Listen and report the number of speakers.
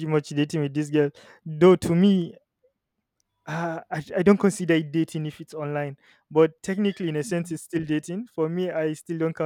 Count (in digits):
1